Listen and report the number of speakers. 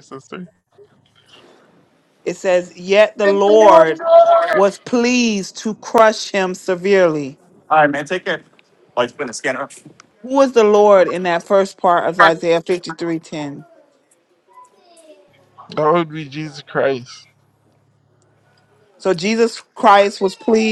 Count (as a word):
three